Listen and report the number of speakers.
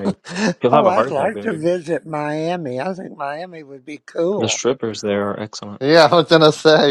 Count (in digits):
3